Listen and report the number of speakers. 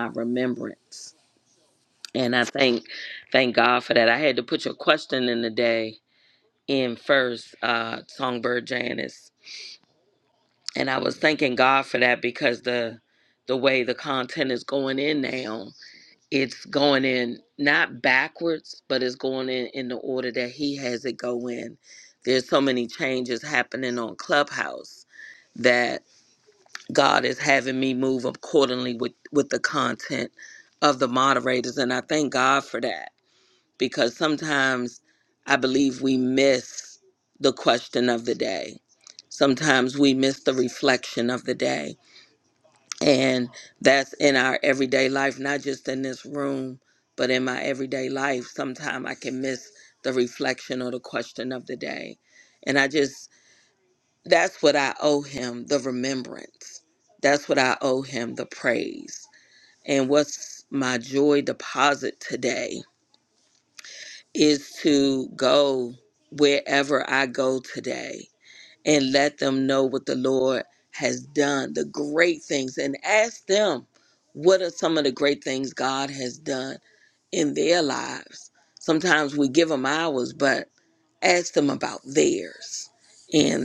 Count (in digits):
1